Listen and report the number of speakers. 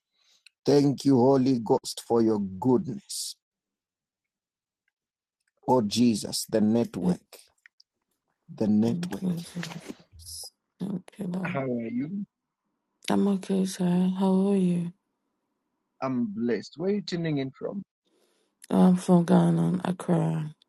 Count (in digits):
2